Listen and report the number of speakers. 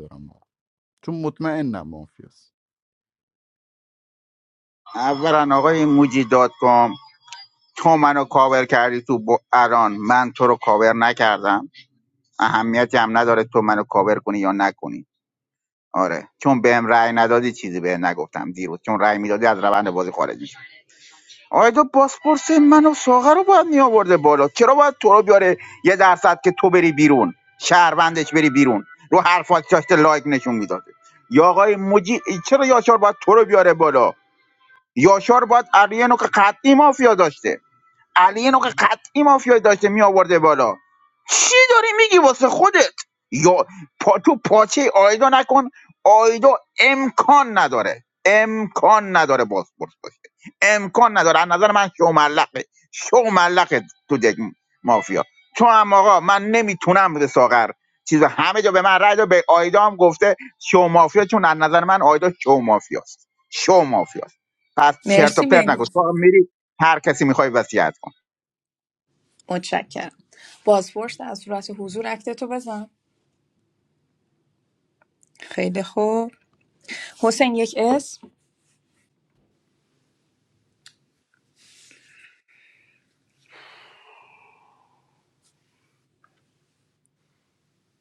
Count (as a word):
three